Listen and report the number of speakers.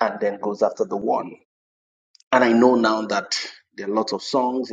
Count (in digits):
1